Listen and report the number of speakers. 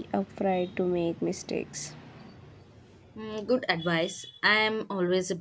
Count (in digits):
2